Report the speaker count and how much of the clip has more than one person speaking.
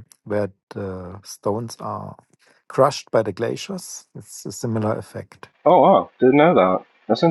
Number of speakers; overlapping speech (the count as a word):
two, no overlap